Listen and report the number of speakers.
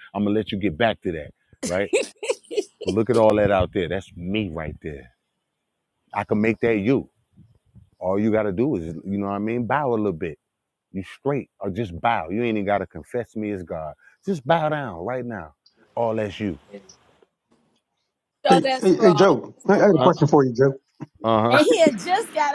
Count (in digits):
3